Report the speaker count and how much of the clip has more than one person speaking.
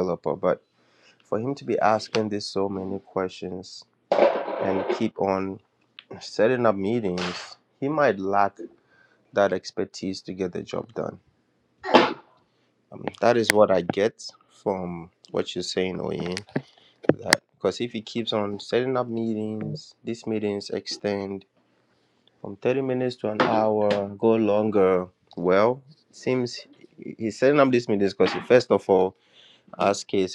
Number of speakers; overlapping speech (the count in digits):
1, no overlap